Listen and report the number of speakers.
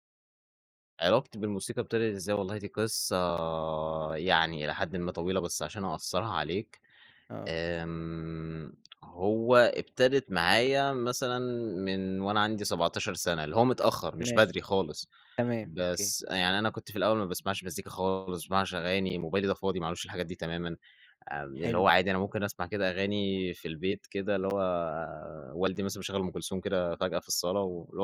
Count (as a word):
two